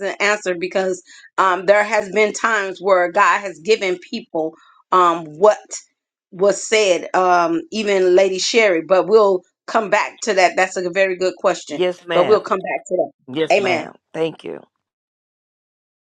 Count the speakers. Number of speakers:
2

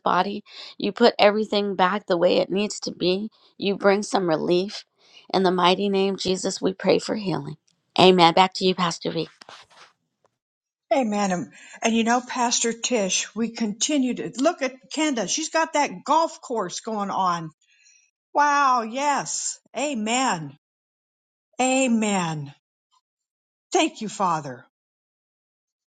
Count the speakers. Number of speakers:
2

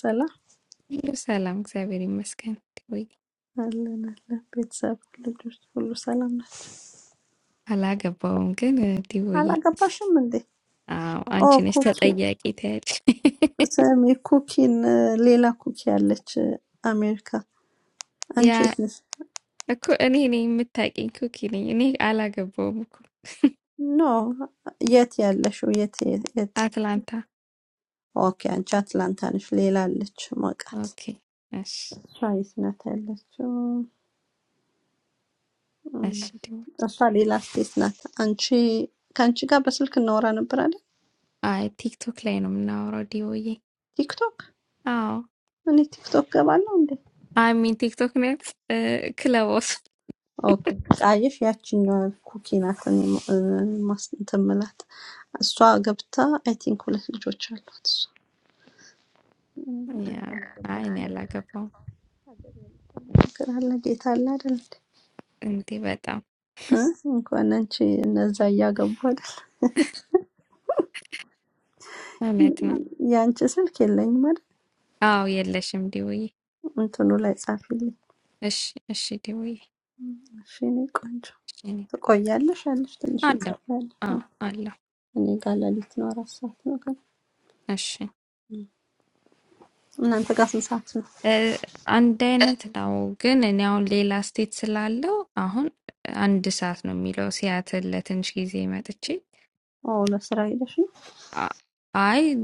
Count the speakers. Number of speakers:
2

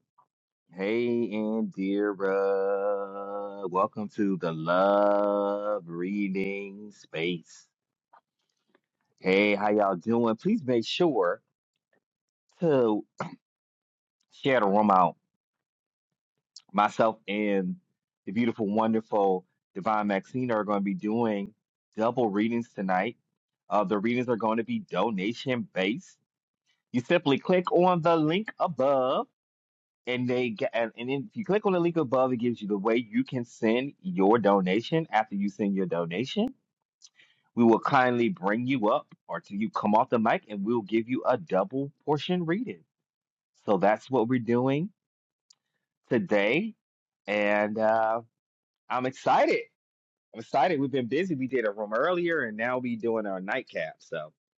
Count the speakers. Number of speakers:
1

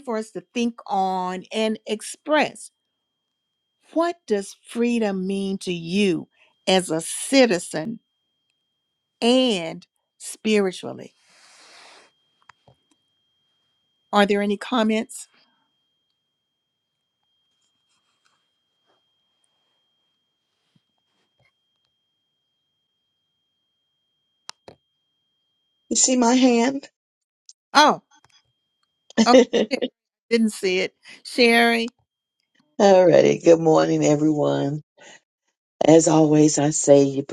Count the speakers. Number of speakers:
2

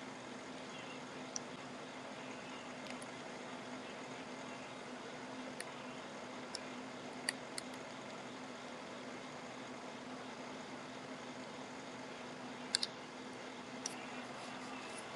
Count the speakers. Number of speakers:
0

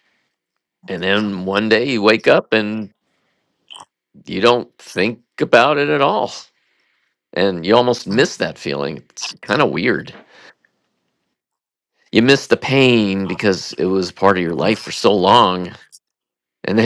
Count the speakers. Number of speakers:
1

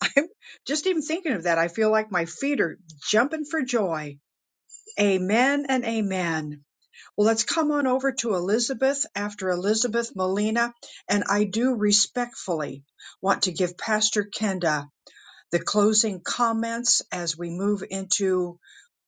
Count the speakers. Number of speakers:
1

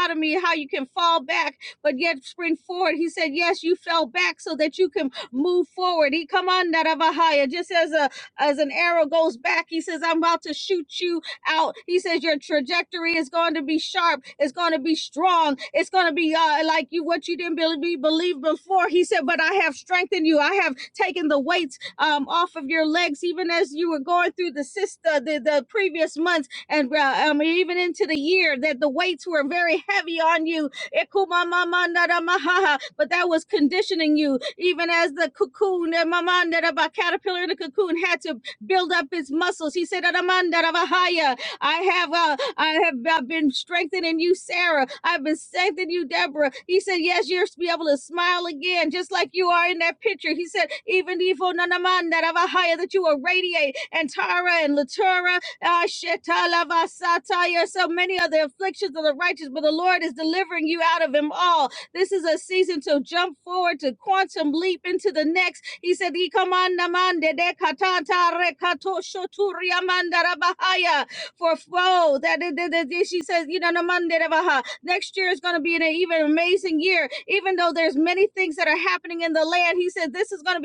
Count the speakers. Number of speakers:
1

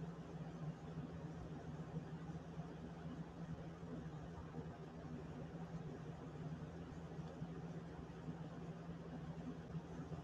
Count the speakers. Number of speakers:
0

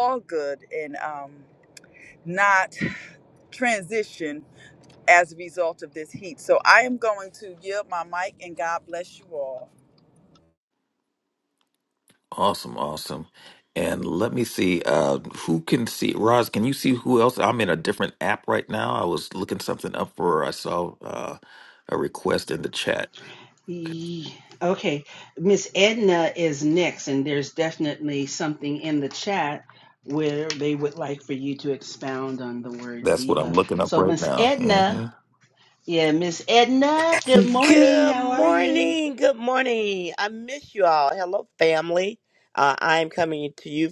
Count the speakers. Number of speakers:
4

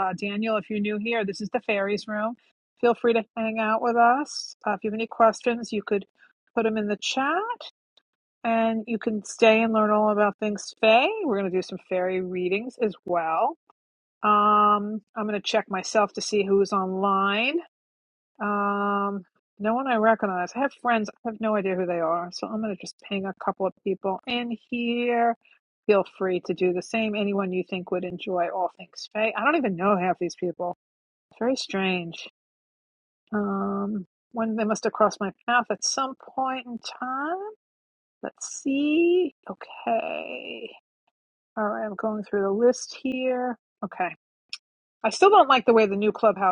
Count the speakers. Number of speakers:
1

